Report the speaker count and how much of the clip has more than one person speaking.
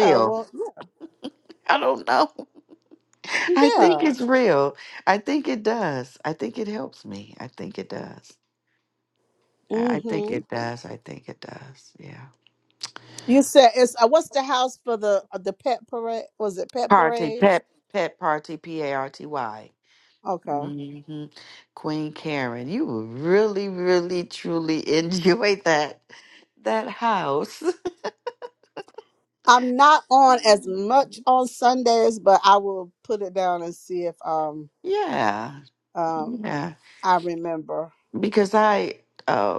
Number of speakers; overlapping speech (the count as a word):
two, about 6%